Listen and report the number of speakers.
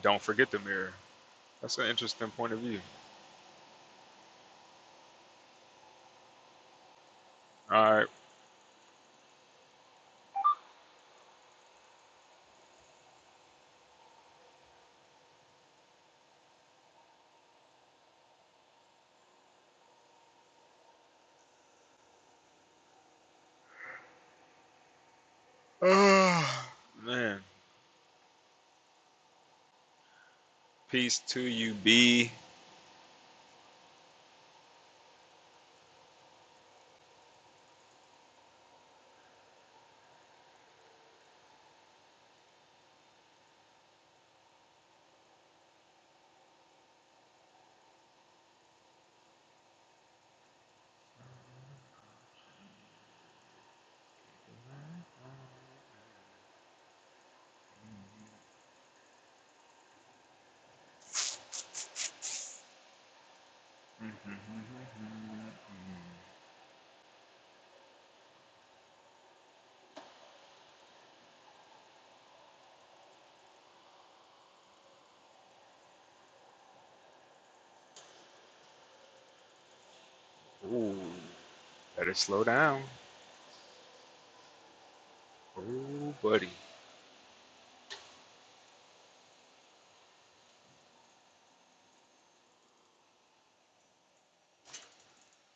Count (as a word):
one